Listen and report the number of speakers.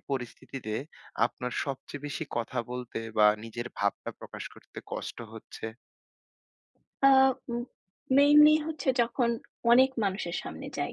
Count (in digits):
2